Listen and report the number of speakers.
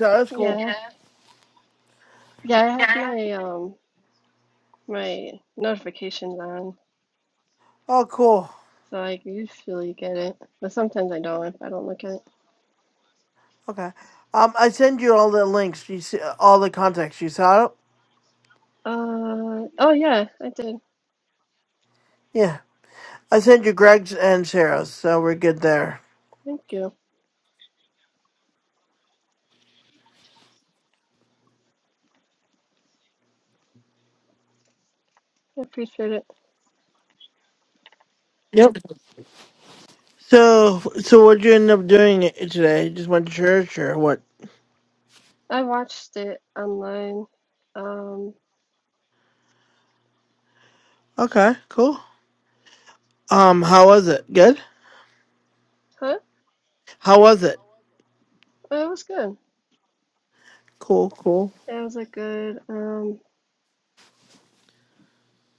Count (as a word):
two